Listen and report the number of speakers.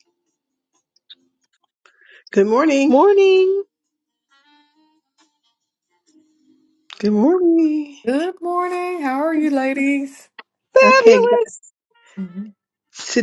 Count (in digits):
3